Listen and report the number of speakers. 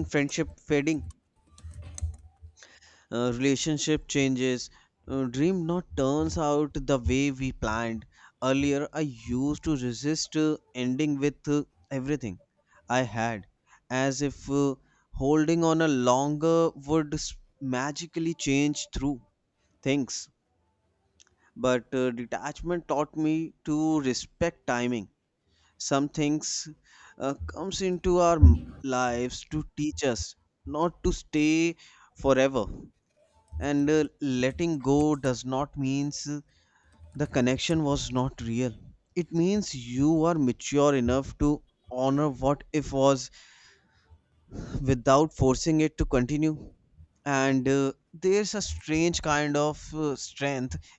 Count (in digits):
1